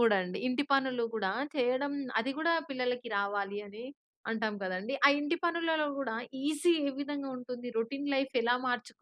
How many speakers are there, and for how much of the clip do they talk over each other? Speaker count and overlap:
one, no overlap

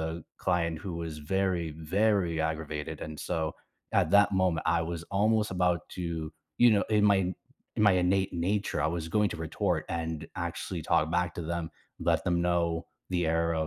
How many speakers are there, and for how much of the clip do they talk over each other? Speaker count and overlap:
one, no overlap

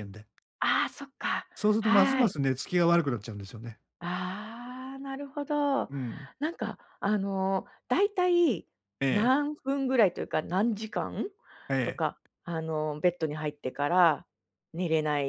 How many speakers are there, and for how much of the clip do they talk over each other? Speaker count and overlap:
two, about 5%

